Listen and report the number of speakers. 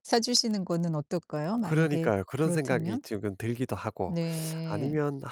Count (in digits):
2